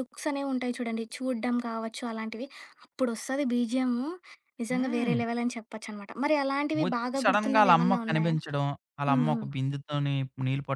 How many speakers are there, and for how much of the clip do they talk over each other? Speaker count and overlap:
2, about 24%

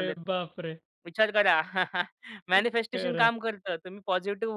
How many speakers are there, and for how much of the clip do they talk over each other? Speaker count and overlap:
2, about 13%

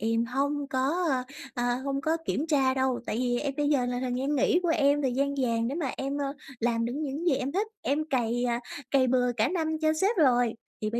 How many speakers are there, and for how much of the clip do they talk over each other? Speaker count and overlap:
1, no overlap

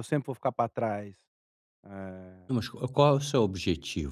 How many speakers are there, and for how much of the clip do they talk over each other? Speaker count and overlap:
2, no overlap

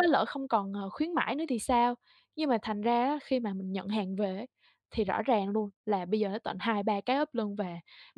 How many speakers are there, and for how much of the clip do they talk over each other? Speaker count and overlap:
1, no overlap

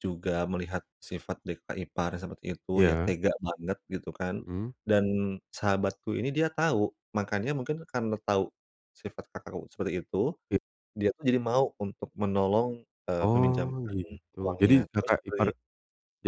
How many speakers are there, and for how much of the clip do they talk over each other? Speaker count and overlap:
2, about 14%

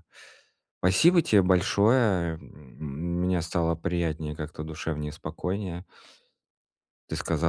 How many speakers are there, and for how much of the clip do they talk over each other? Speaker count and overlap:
1, no overlap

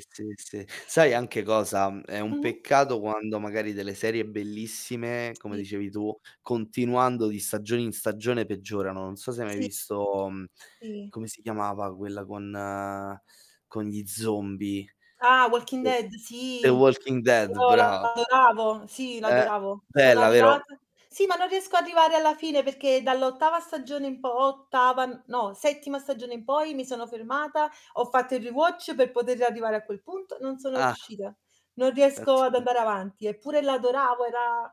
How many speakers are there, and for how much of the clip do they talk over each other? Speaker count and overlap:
2, about 8%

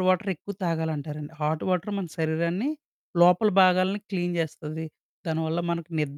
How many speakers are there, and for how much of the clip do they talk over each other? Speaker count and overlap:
1, no overlap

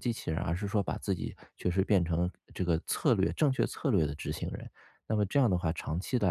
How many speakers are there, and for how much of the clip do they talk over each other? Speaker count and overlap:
1, no overlap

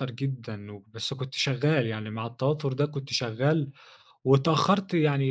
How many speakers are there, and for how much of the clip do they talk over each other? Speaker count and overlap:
1, no overlap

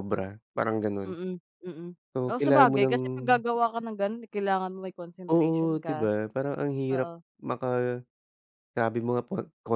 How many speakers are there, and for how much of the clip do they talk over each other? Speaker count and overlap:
2, about 18%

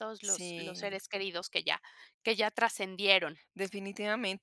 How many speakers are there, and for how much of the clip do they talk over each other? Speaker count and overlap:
2, about 12%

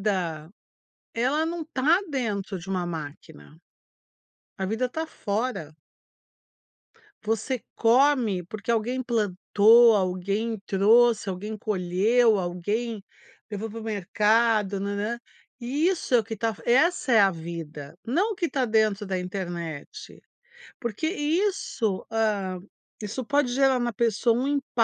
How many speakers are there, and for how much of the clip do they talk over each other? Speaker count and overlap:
1, no overlap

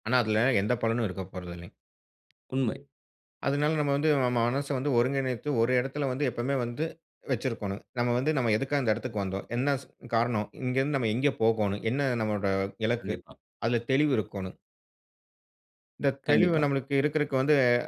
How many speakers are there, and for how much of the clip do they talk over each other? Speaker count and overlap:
2, about 3%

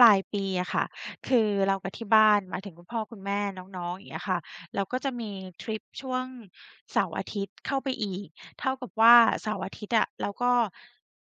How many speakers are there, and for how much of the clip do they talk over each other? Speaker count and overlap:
1, no overlap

